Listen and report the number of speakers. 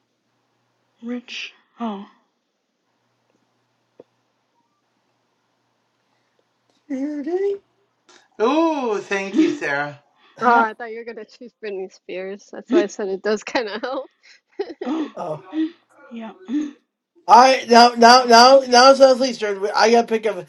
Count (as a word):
four